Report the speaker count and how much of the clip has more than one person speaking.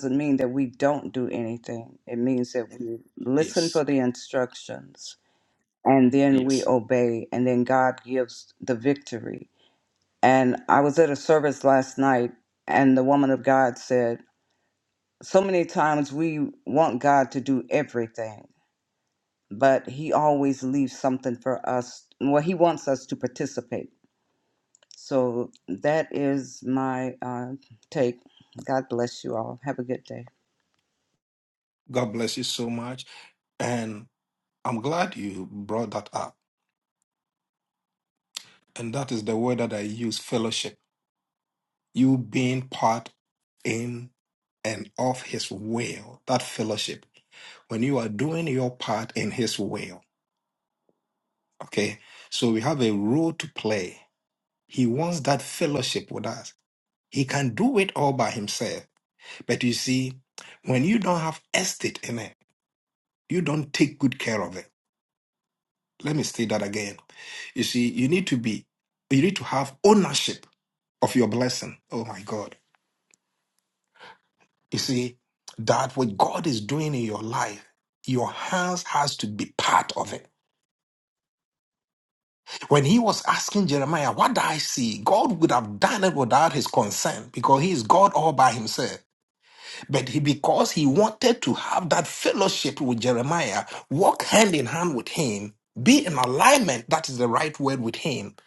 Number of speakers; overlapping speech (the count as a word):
two, about 1%